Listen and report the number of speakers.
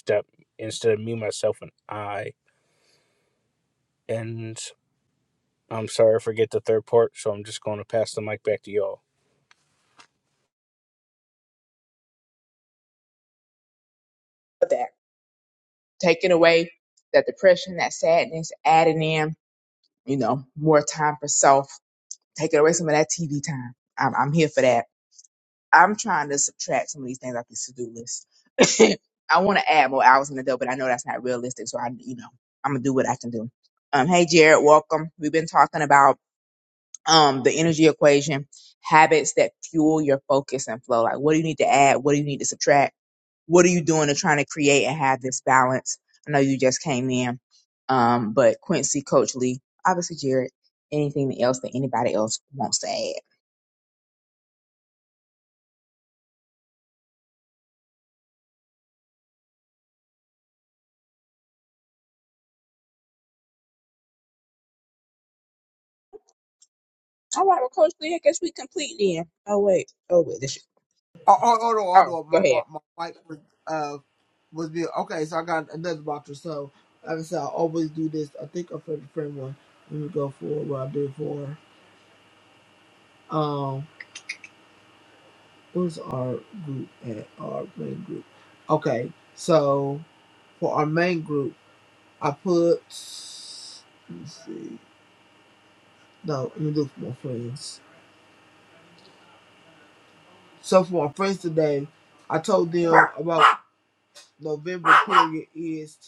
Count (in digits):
3